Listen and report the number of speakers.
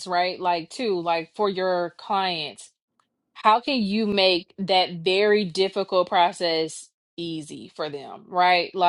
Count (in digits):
1